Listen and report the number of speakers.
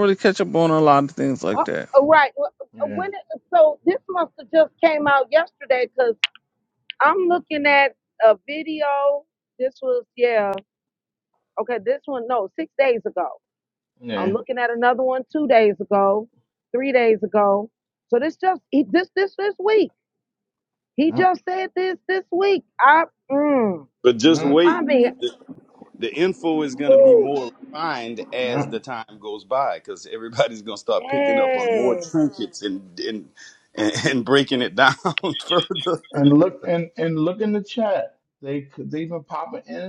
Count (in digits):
4